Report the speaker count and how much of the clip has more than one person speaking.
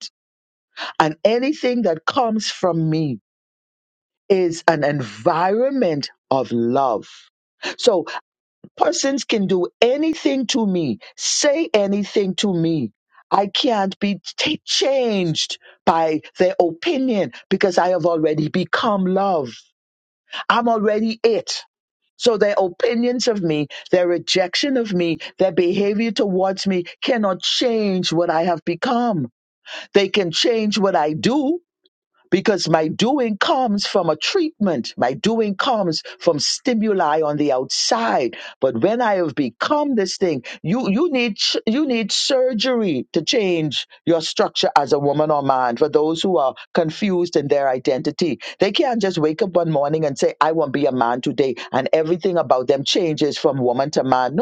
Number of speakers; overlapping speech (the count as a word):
one, no overlap